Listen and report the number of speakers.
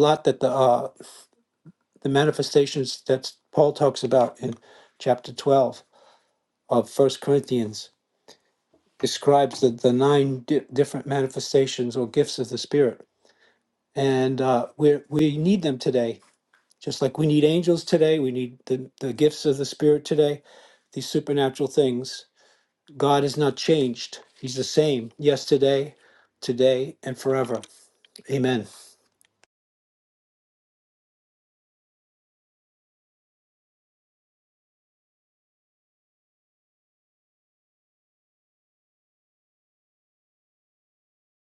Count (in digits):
1